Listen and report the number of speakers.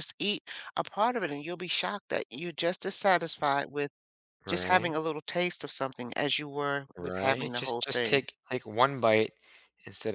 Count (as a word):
two